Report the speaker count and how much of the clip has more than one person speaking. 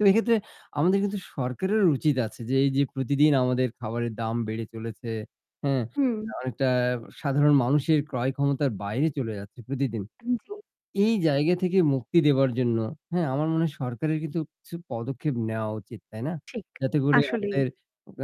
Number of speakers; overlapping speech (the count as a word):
two, about 3%